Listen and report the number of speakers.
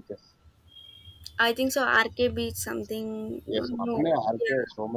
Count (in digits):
2